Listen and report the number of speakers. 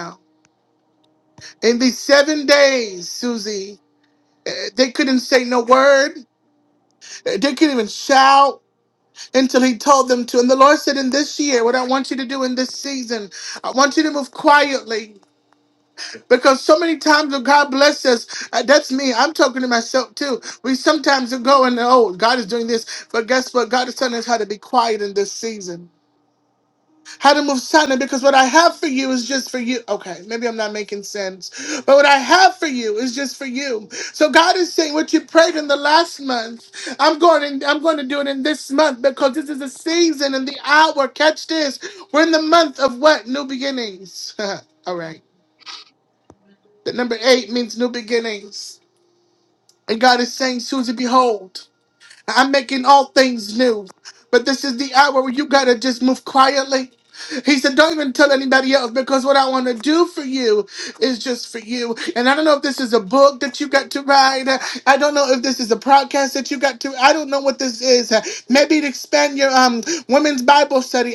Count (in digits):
1